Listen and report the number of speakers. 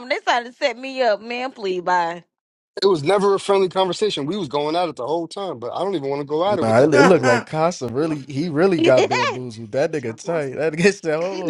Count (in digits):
3